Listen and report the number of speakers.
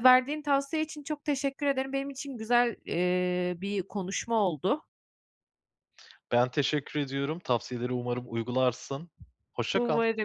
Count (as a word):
two